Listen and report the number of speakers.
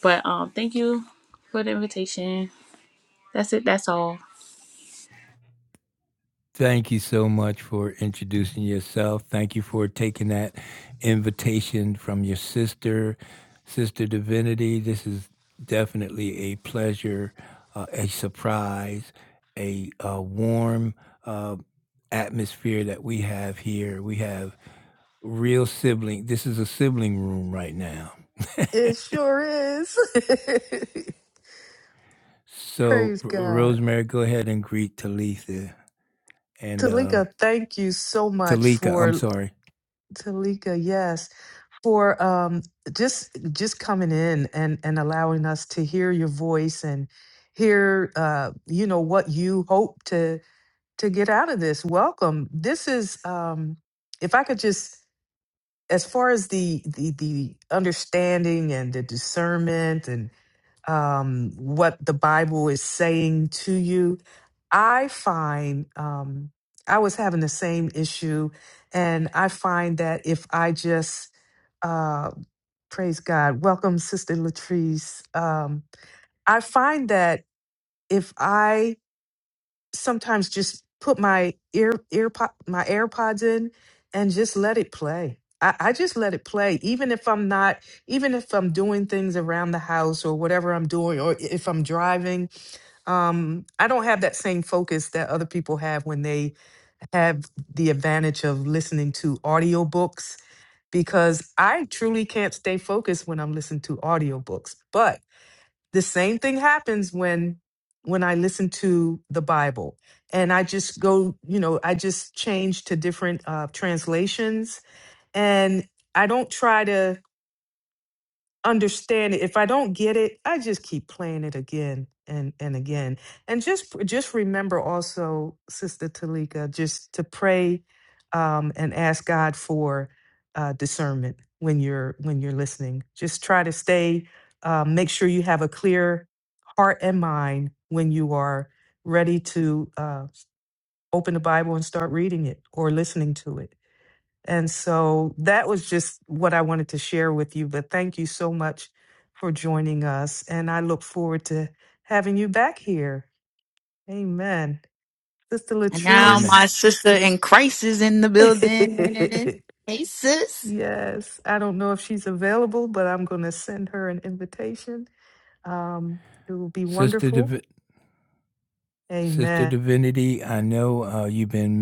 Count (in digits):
4